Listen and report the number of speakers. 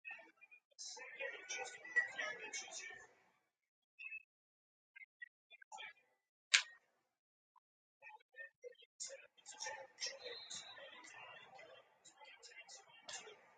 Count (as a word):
zero